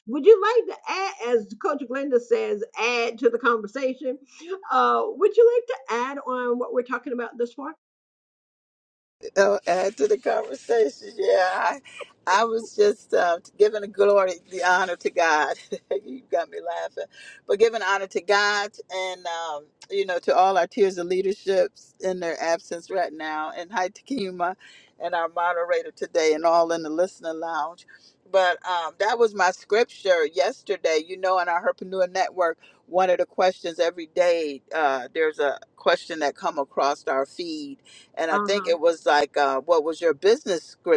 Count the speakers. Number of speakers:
2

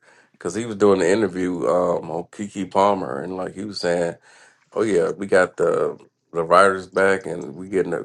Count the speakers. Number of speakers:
1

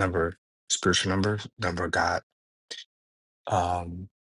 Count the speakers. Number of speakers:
1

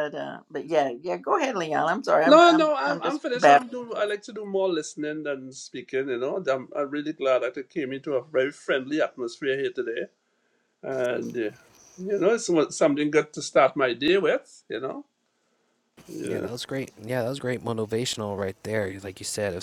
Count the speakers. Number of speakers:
3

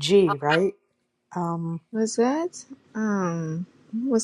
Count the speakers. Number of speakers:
2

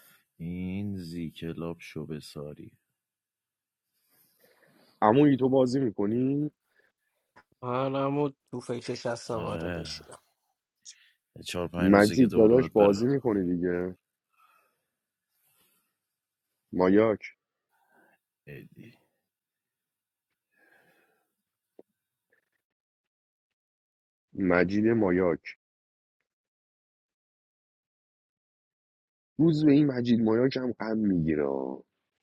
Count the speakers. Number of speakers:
3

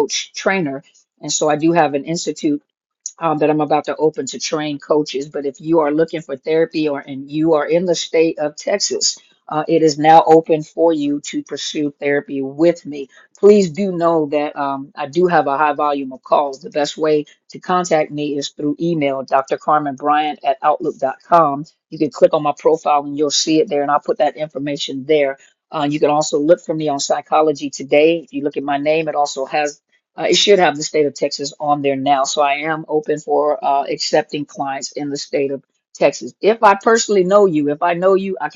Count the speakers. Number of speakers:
1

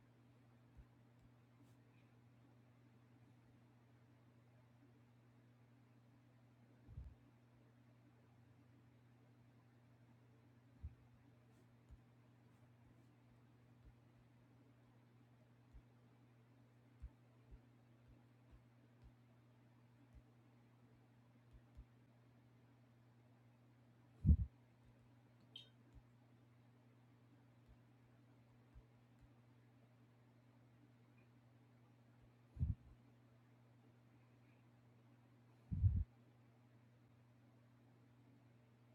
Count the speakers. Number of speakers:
0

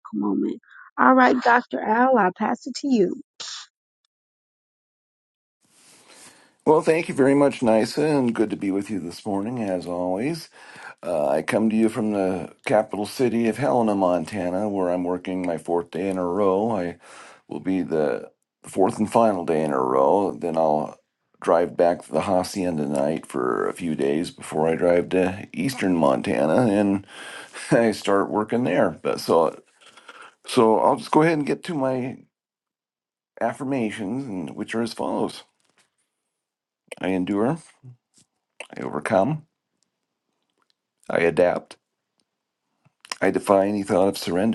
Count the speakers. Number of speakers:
2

